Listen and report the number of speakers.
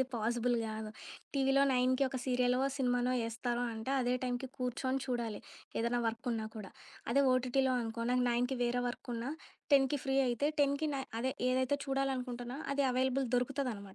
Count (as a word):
one